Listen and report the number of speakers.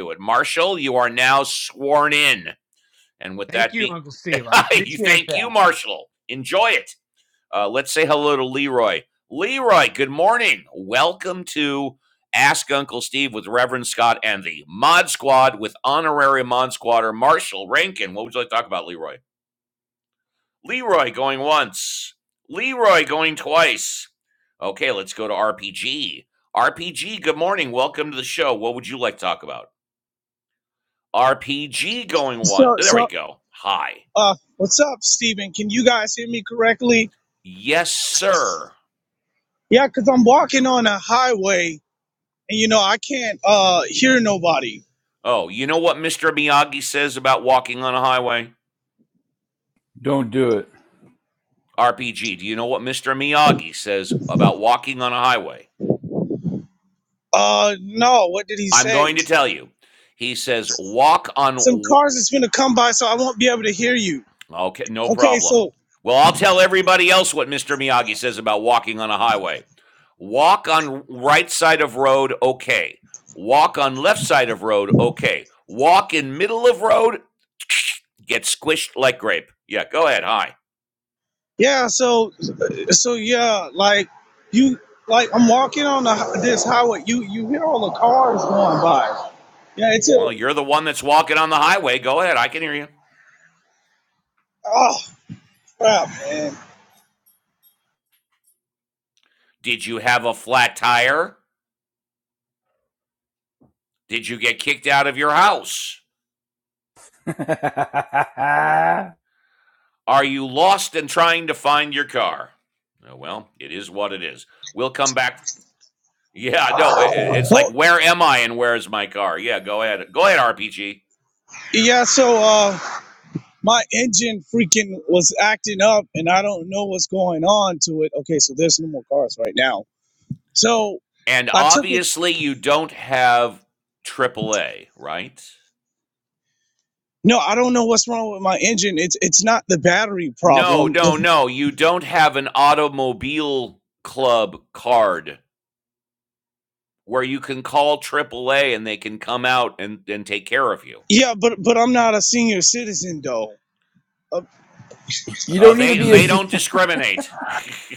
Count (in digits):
4